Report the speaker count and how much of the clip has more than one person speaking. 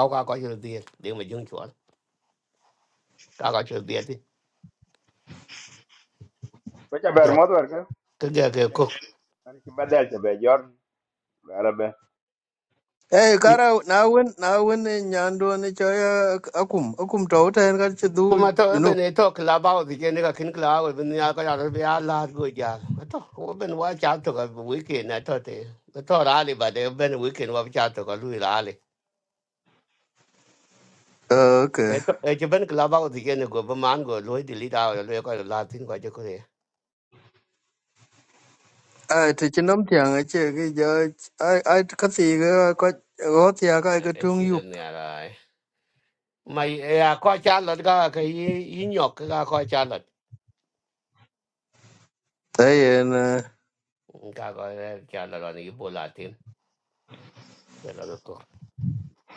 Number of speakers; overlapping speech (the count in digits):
3, about 2%